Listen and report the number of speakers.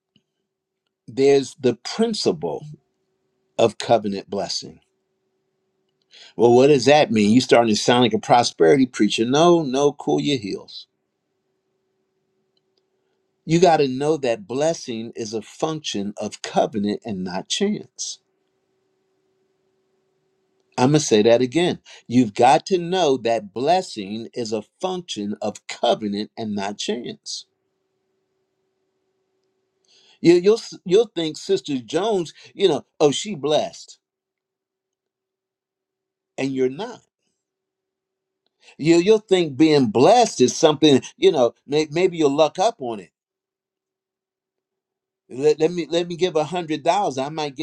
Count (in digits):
1